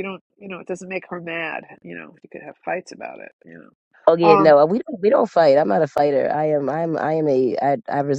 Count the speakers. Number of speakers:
2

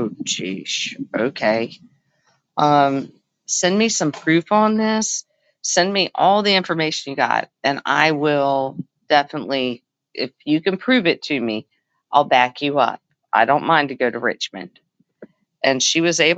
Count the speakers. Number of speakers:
1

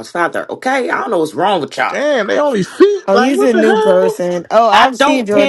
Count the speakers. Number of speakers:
3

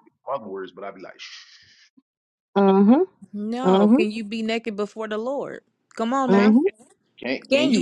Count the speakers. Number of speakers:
3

